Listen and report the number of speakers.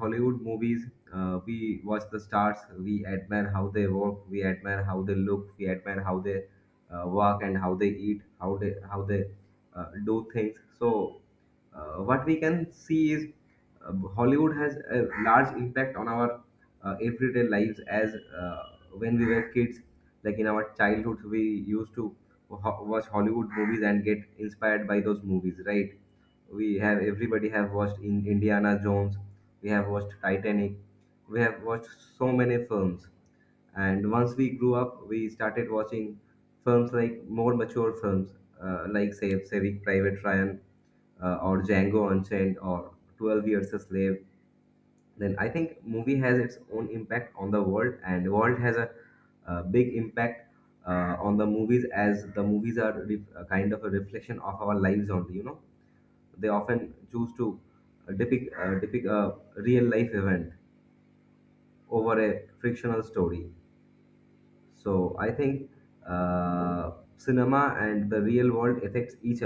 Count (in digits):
1